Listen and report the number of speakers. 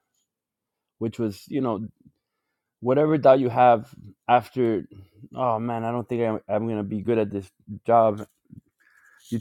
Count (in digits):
1